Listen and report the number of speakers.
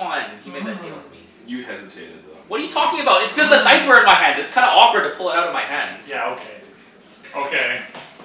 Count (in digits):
3